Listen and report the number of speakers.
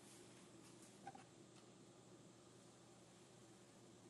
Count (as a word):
zero